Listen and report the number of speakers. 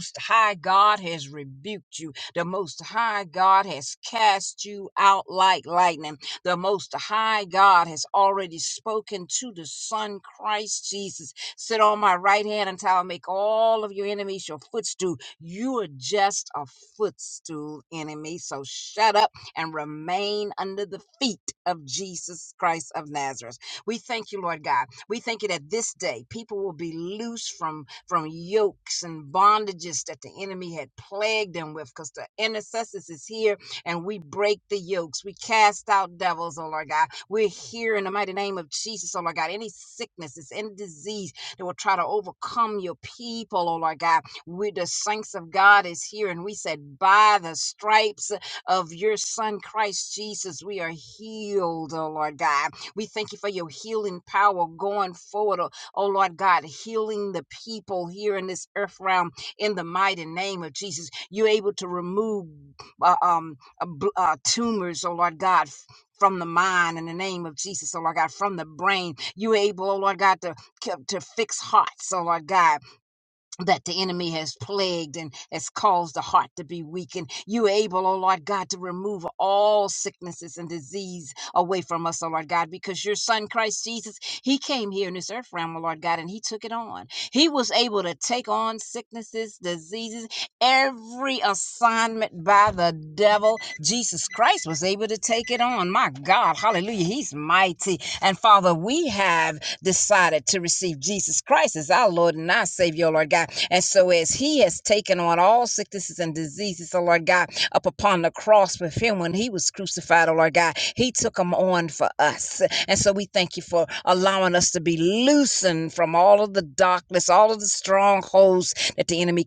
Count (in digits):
1